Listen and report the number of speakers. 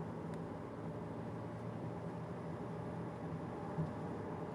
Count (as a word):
zero